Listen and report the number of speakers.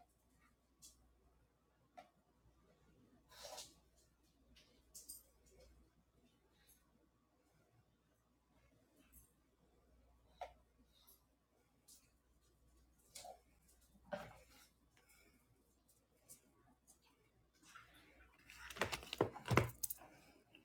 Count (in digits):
0